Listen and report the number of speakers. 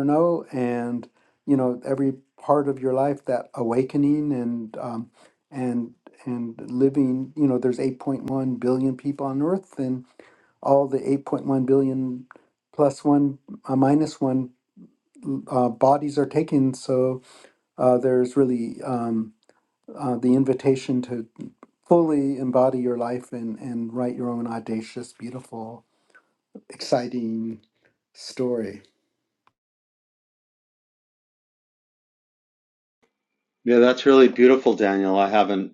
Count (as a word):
two